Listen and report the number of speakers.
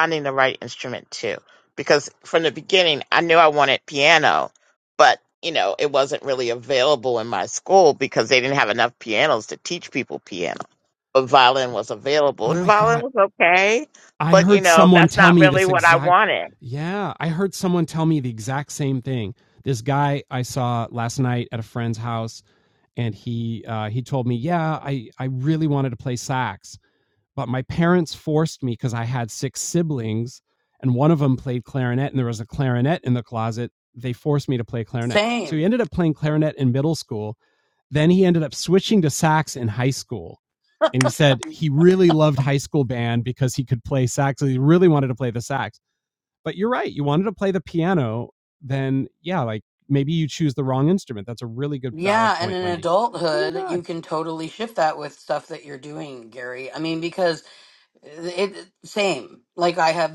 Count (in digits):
3